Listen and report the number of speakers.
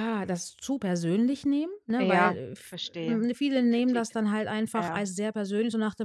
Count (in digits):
2